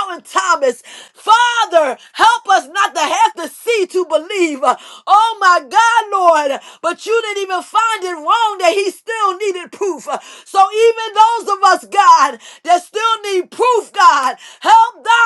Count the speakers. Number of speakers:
one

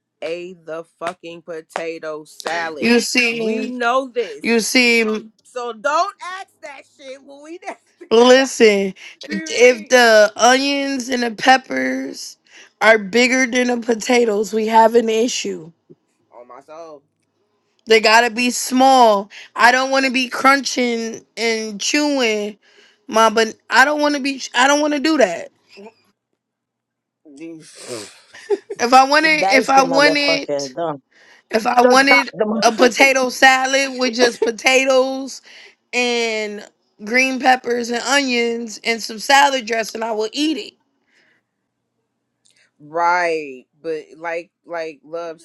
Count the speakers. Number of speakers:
three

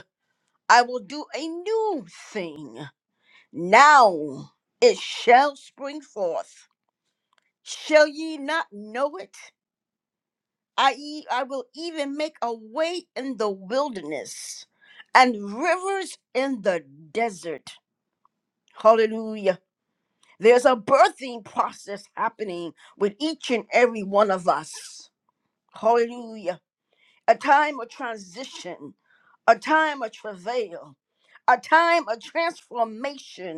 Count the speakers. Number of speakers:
one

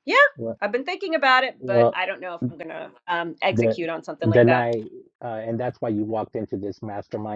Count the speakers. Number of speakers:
two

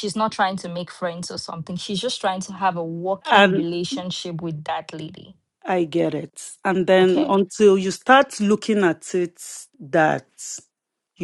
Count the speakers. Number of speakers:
two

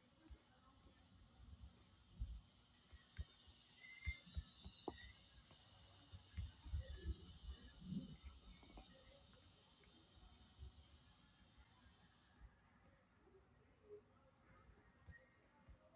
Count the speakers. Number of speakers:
zero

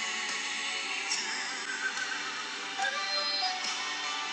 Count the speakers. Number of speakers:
zero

